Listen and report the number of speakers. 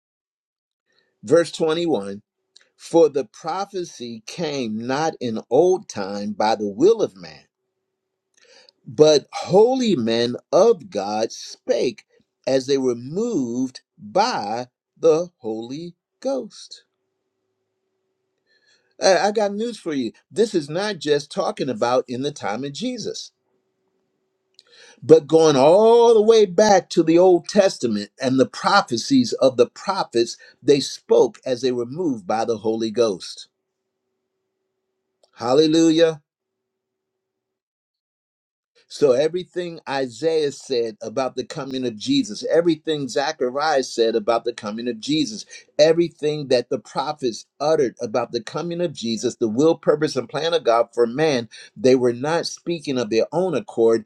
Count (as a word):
one